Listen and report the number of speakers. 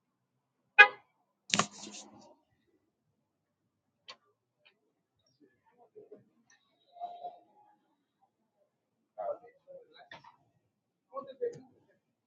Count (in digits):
0